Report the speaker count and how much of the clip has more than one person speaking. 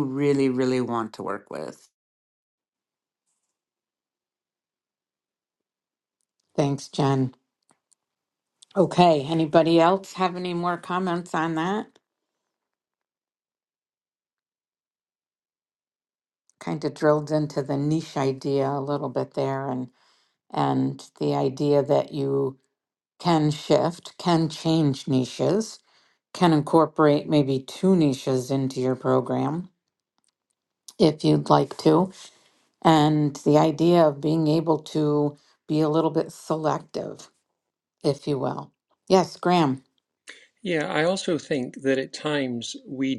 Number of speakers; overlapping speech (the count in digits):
3, no overlap